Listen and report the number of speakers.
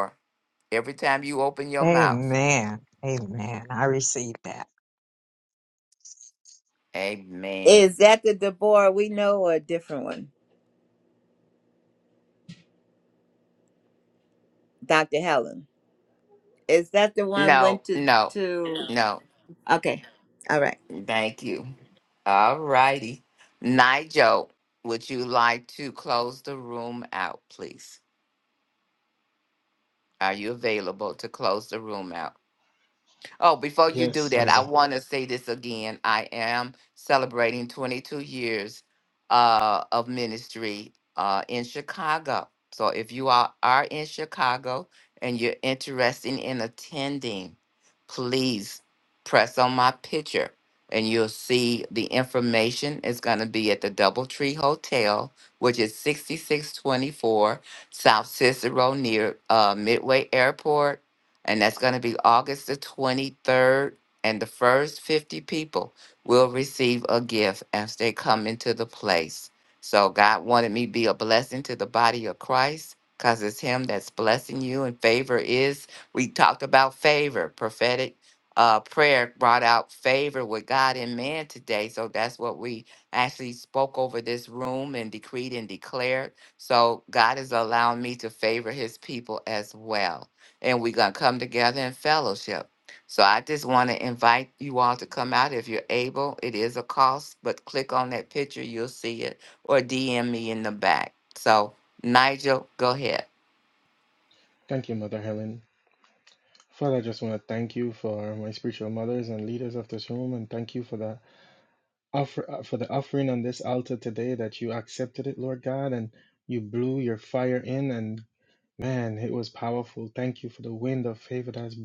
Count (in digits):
4